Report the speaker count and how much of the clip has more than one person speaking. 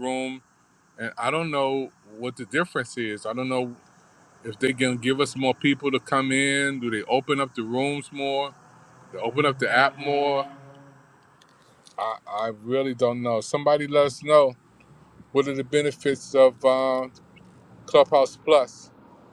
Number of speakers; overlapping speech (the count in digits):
1, no overlap